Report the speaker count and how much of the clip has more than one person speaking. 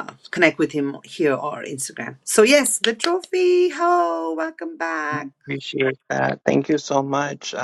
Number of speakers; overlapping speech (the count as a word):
two, no overlap